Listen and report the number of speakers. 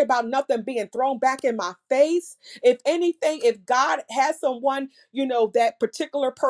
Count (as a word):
one